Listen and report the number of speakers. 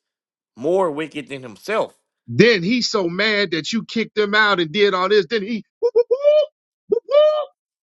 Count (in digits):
2